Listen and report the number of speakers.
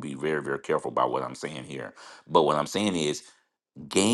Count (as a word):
one